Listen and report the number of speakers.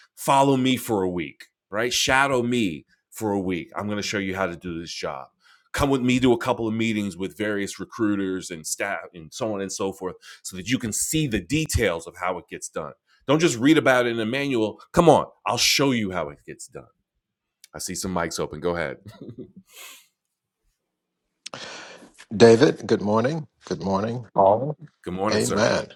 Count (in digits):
2